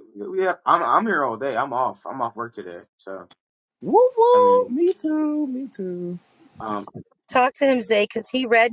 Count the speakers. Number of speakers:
3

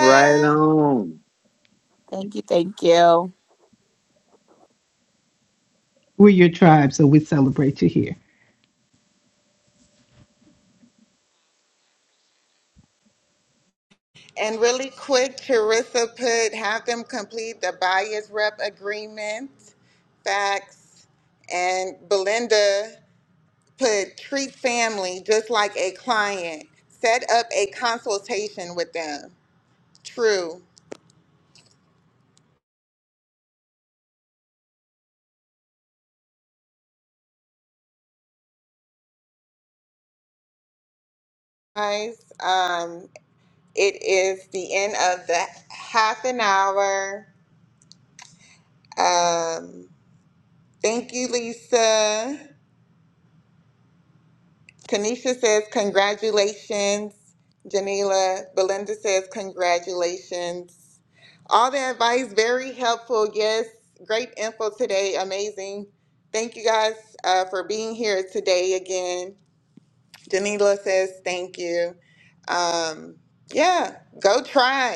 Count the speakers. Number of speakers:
4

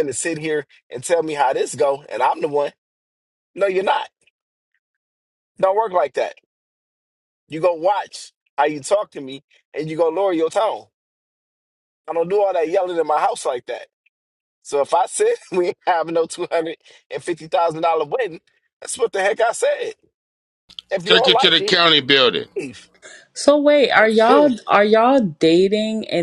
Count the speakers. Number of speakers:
3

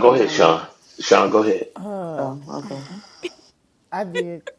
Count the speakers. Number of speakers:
3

